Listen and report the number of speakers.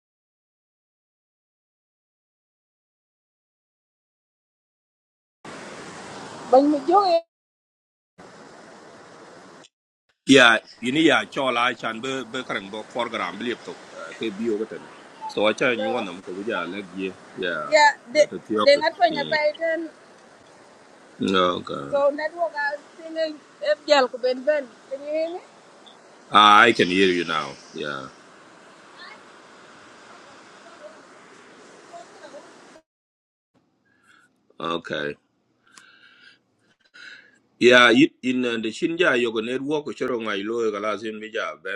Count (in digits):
2